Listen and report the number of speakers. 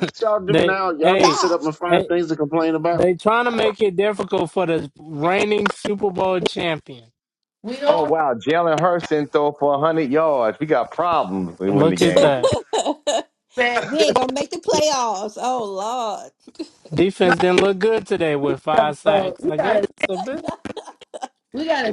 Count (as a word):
five